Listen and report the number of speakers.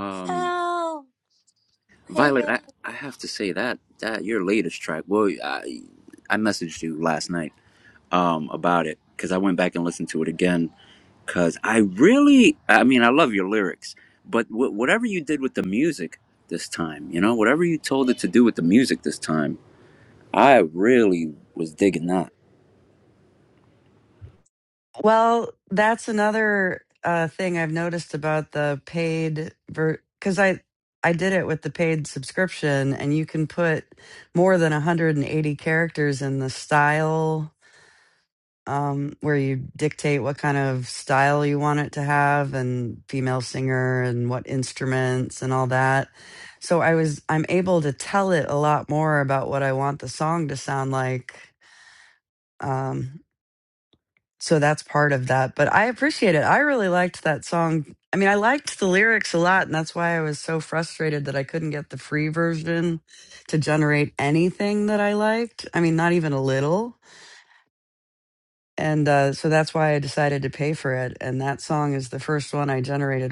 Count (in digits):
3